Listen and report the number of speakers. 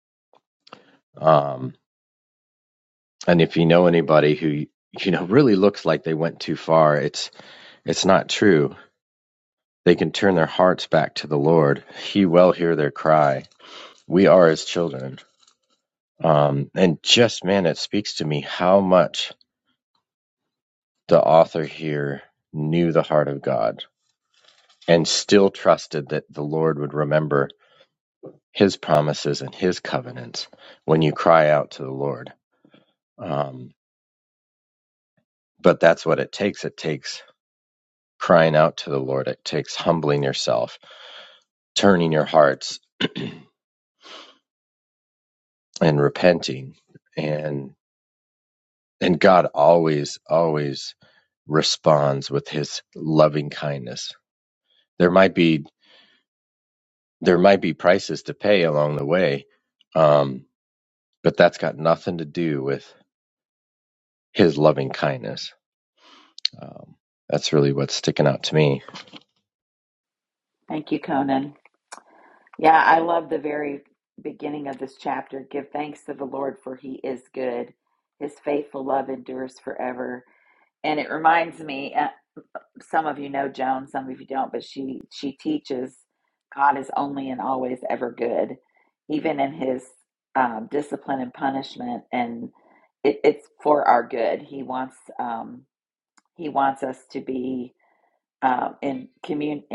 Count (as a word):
two